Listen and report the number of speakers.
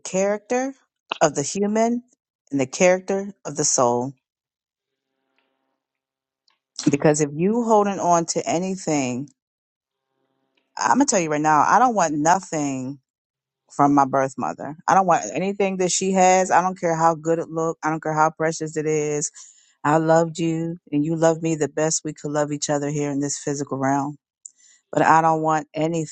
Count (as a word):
one